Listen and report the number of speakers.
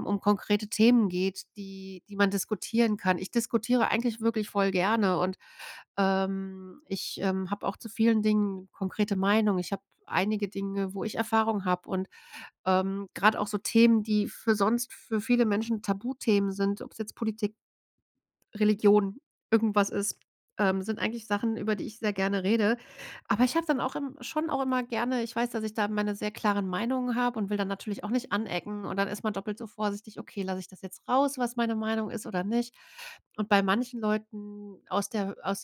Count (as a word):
one